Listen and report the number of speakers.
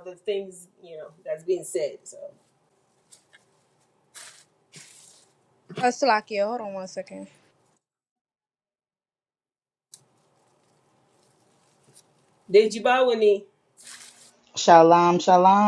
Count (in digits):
3